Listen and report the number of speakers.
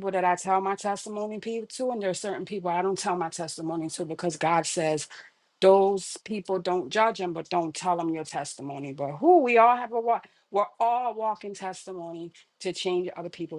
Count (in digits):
1